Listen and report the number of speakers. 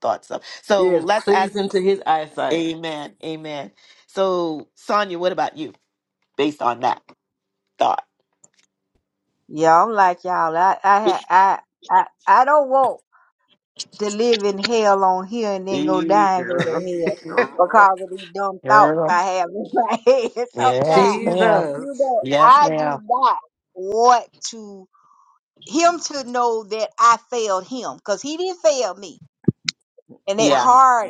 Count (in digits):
3